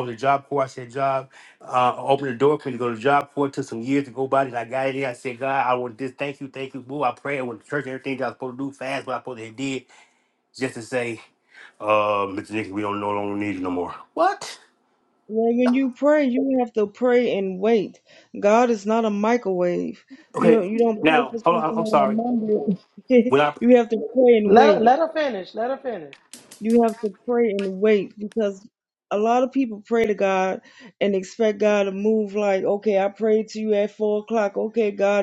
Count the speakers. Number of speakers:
3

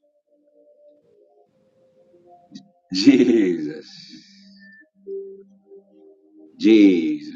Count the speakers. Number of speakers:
1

